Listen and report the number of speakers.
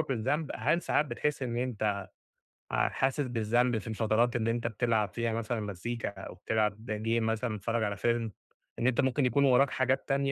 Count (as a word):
one